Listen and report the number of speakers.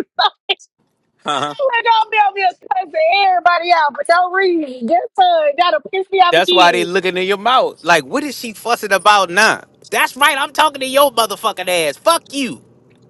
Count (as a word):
two